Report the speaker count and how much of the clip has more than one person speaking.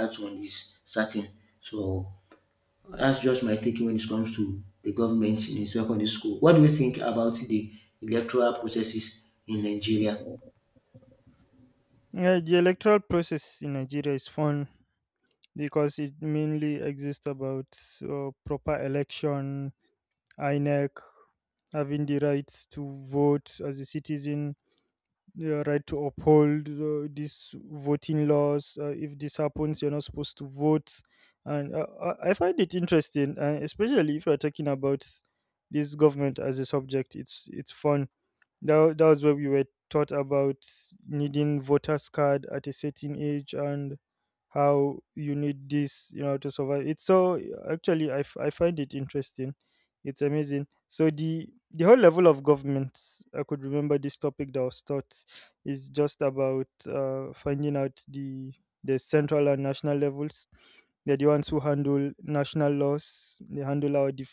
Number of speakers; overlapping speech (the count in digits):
2, no overlap